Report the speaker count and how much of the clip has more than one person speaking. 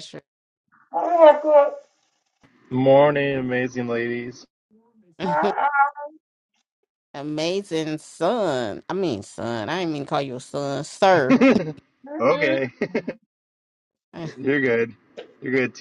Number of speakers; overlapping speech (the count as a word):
three, about 3%